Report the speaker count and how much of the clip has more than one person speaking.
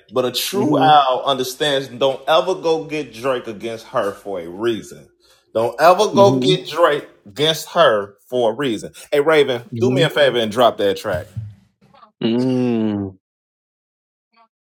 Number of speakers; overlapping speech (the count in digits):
2, about 8%